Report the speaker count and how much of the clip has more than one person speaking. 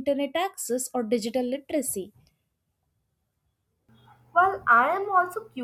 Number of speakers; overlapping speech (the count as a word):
two, no overlap